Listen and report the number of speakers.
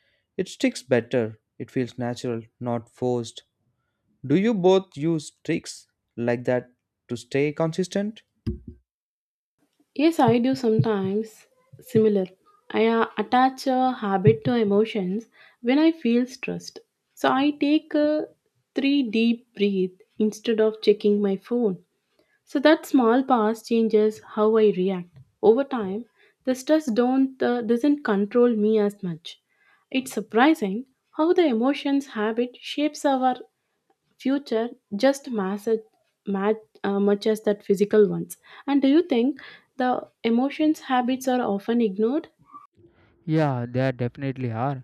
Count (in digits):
3